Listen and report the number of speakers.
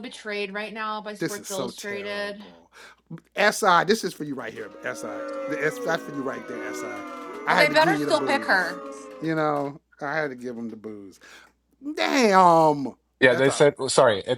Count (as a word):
three